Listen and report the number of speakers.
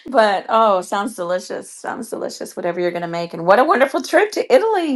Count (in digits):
1